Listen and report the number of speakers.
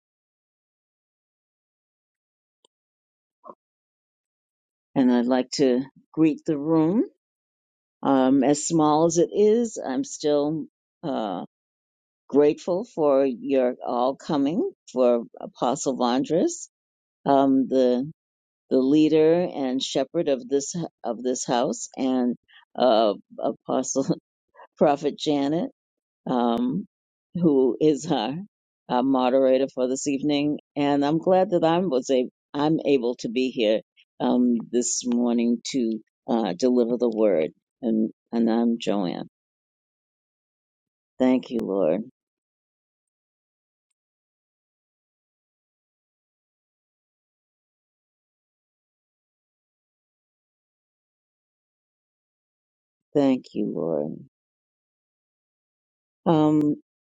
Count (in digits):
1